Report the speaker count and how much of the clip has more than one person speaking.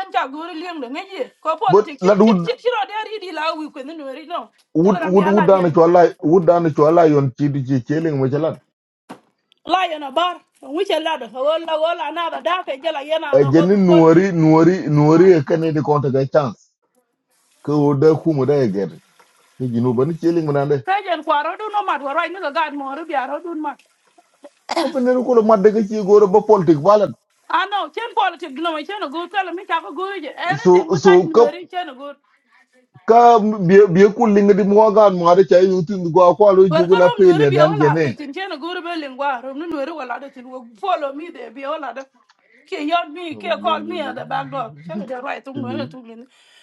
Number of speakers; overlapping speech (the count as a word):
two, about 13%